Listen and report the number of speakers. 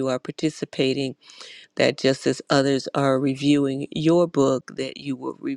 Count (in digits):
1